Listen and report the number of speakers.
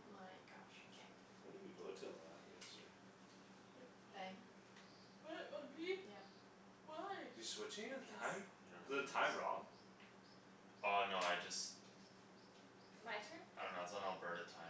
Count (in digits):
4